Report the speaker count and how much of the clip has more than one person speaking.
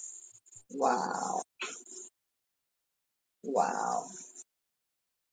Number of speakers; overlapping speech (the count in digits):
1, no overlap